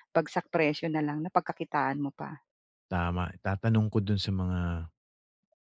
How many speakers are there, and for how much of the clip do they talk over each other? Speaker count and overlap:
2, no overlap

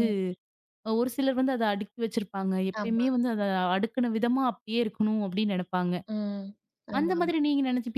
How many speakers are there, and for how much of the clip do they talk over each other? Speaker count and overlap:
2, about 9%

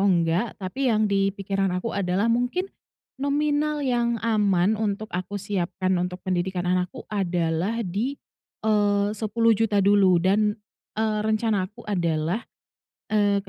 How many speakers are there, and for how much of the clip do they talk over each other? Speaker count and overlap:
1, no overlap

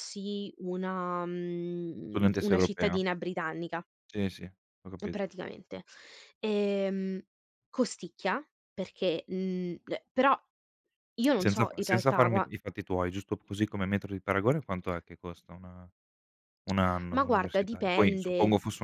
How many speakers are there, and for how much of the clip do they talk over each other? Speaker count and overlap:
2, about 18%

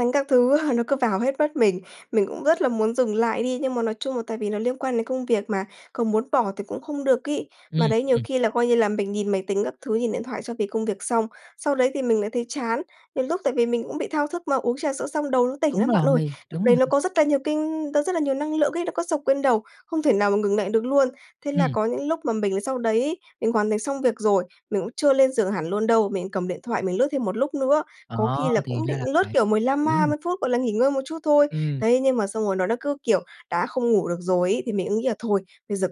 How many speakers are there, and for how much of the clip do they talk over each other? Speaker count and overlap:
2, about 10%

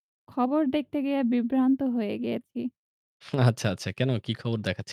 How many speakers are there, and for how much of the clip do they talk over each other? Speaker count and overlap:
2, no overlap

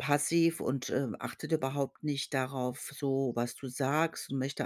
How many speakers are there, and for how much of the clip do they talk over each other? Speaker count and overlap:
1, no overlap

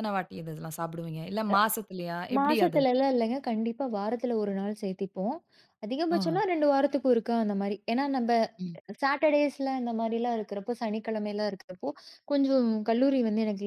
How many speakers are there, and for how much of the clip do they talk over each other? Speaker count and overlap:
2, about 6%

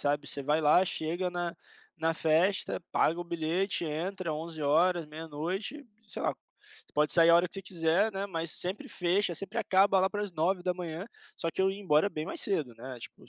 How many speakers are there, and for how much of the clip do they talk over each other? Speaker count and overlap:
1, no overlap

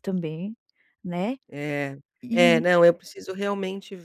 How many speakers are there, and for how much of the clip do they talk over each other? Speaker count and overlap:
2, about 8%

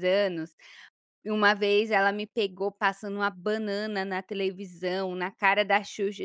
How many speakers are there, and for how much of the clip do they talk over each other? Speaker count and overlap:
1, no overlap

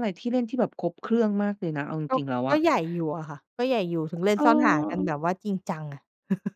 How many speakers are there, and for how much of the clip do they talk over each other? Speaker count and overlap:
2, about 19%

